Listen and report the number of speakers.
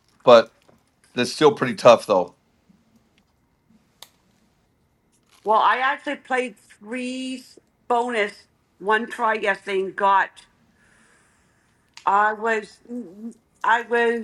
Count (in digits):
2